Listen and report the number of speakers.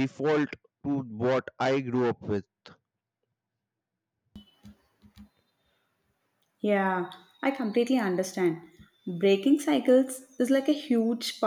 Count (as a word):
two